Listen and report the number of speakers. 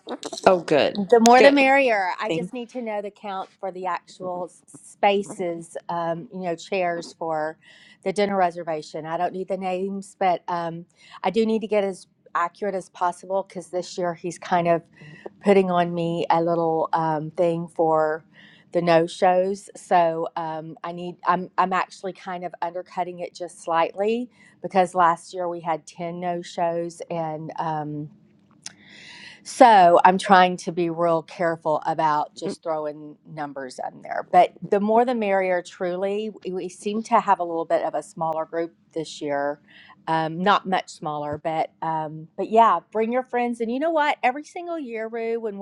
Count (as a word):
two